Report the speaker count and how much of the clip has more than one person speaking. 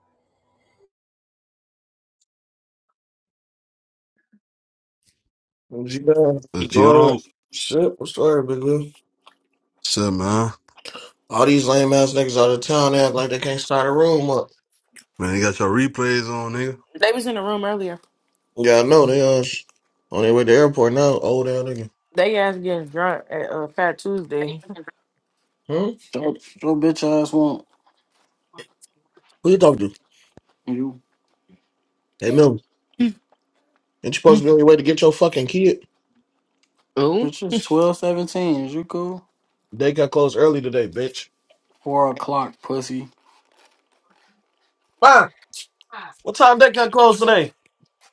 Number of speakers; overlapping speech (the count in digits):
4, about 1%